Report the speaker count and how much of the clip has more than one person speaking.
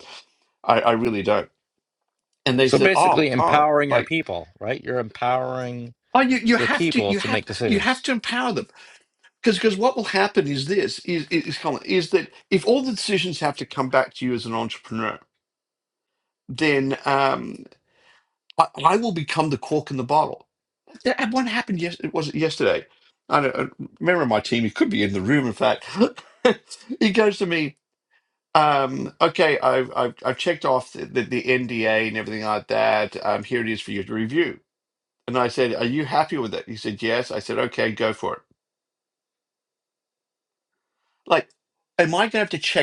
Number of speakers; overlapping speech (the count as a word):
two, about 6%